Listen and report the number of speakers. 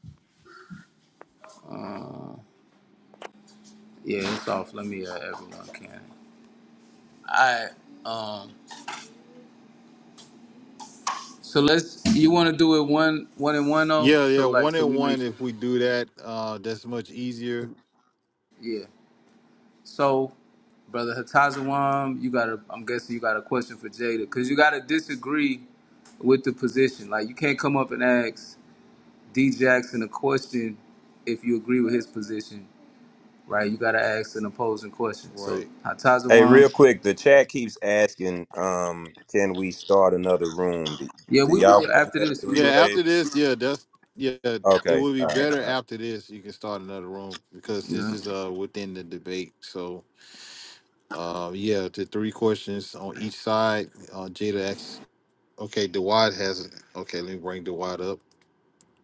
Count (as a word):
three